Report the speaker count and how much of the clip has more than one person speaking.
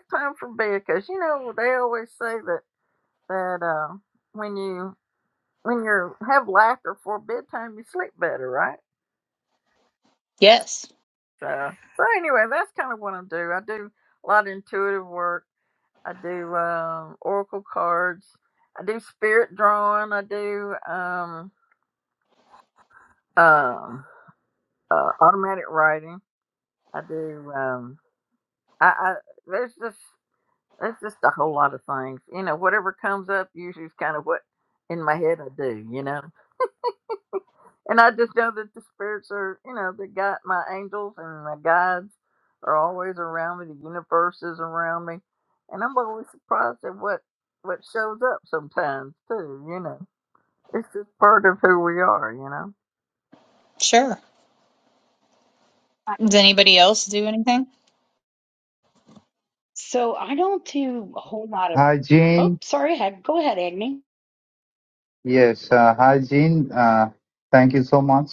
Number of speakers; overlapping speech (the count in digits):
4, under 1%